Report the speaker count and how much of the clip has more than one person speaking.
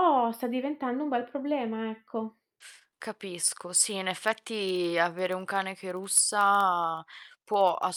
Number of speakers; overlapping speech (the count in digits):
2, no overlap